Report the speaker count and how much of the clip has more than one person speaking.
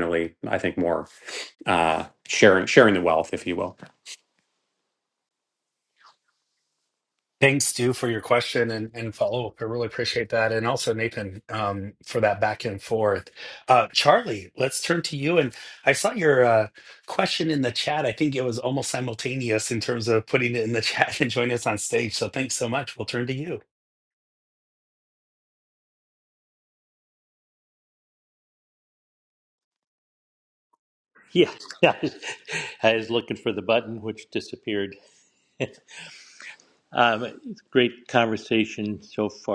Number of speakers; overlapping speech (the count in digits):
3, no overlap